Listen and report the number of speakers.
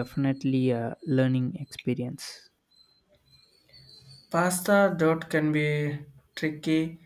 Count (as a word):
two